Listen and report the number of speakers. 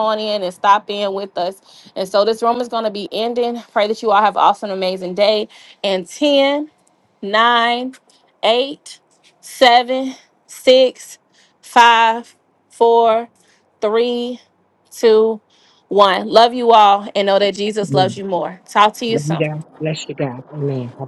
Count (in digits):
2